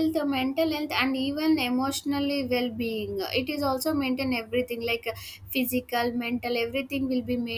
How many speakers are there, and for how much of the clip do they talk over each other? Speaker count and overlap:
one, no overlap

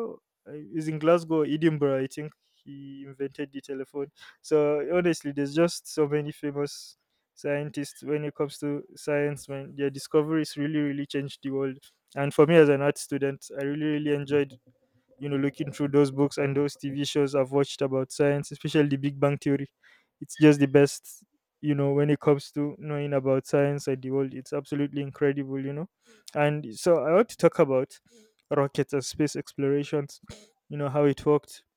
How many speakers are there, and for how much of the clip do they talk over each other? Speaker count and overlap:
one, no overlap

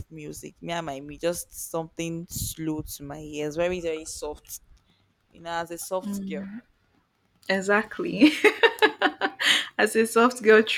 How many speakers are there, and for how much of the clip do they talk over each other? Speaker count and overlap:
two, no overlap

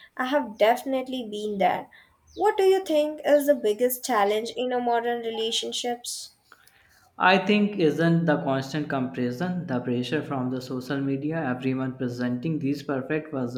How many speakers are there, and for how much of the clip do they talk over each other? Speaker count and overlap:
two, no overlap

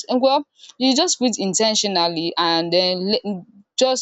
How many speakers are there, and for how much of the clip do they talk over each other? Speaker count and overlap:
one, no overlap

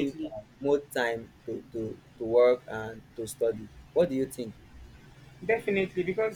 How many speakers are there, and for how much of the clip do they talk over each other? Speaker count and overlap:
two, about 5%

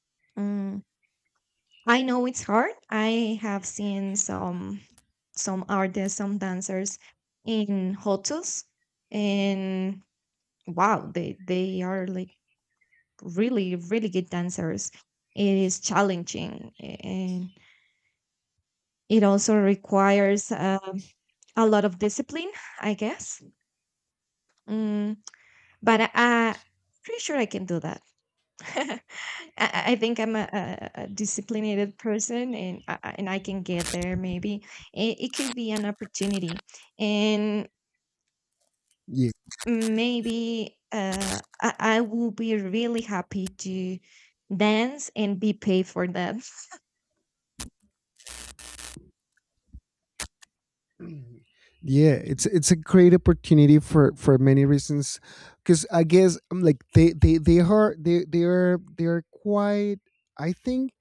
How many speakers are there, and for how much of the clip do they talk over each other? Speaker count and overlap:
two, no overlap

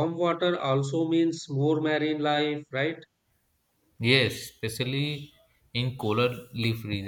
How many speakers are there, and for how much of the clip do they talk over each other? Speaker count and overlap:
two, no overlap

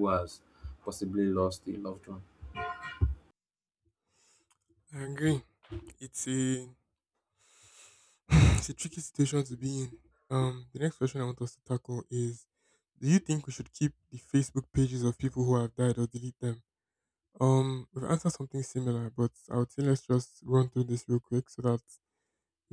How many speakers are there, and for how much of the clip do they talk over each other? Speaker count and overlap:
two, no overlap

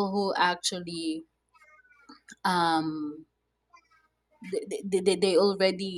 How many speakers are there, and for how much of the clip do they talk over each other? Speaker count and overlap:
one, no overlap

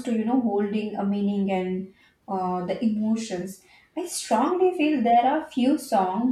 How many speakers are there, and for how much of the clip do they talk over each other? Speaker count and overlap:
one, no overlap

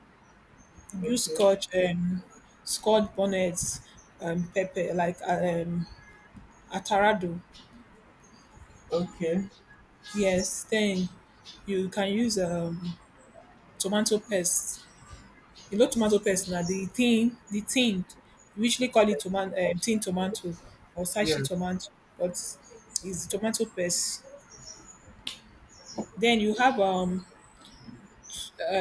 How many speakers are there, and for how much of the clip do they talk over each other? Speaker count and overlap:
two, about 2%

